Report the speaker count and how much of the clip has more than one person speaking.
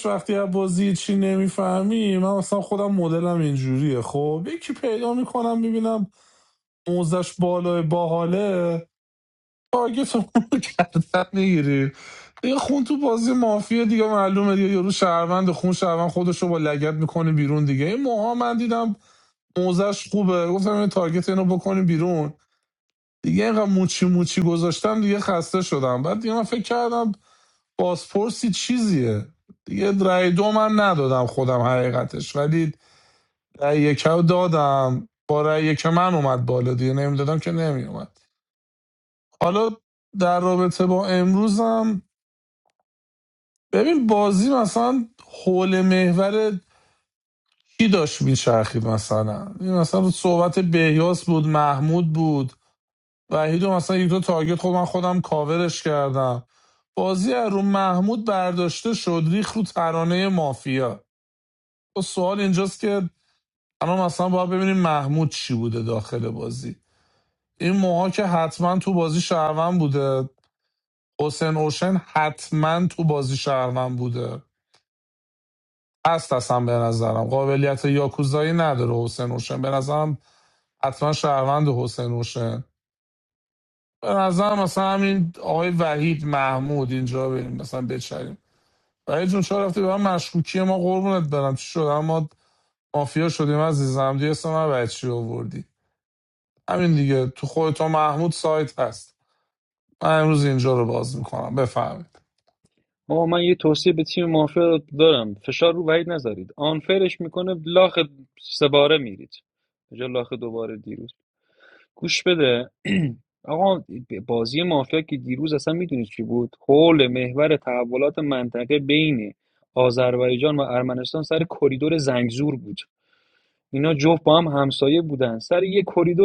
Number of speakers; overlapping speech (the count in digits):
2, no overlap